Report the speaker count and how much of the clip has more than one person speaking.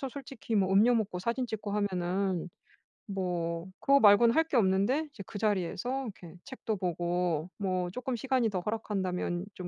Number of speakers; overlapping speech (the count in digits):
1, no overlap